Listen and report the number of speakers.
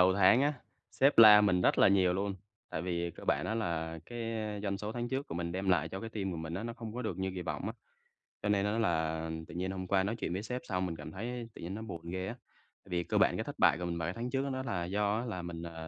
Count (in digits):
1